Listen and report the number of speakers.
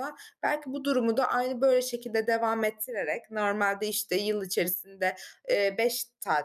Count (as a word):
one